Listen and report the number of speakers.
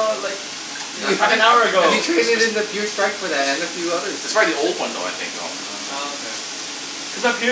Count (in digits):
3